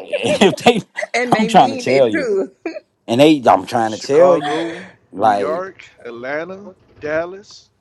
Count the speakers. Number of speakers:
three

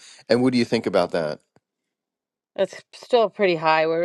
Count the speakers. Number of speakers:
two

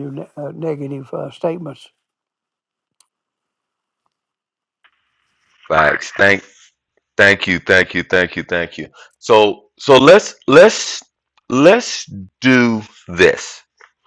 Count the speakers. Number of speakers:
two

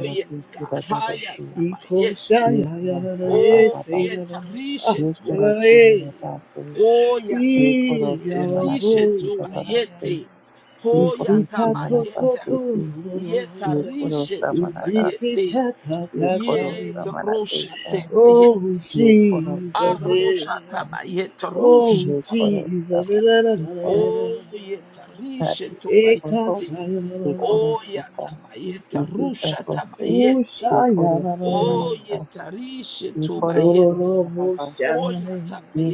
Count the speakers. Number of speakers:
three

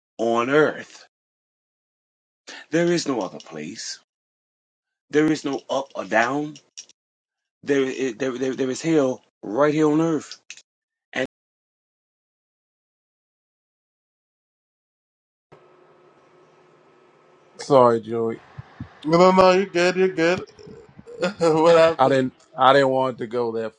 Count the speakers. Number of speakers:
three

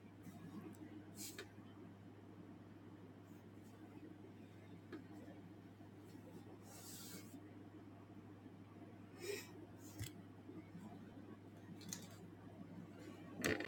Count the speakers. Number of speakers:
zero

